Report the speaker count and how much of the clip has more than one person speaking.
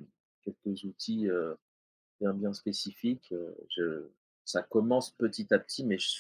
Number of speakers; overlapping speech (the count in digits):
1, no overlap